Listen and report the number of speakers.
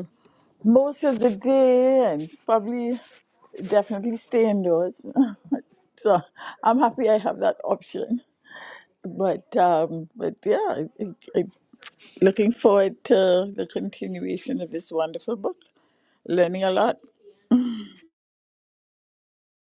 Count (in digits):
1